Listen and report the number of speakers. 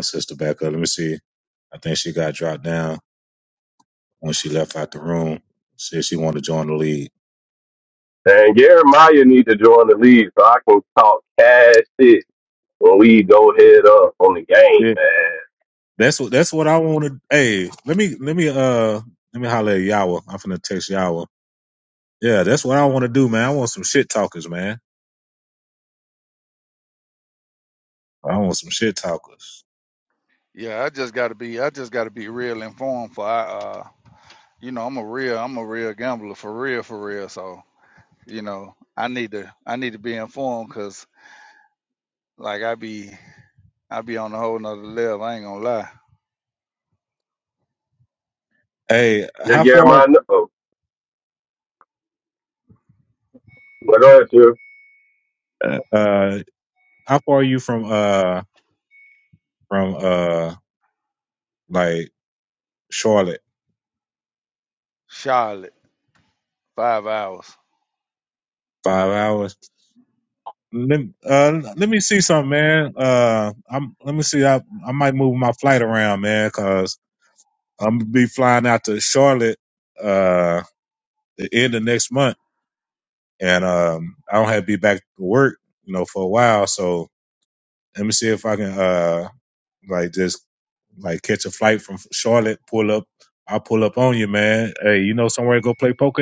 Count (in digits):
3